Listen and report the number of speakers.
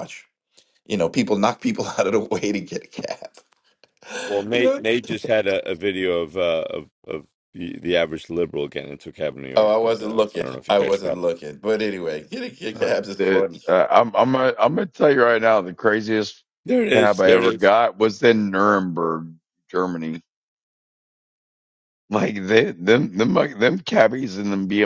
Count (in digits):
3